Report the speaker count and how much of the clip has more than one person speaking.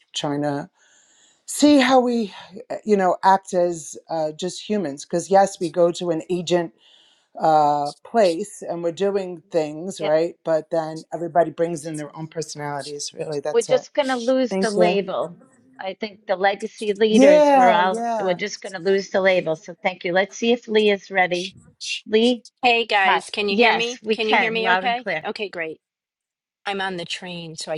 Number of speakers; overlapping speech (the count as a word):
three, about 15%